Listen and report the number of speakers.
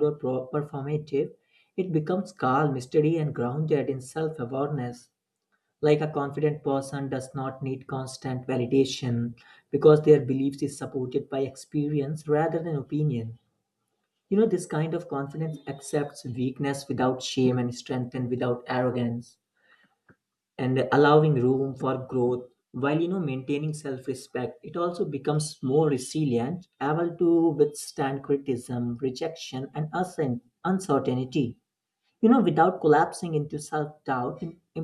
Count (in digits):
1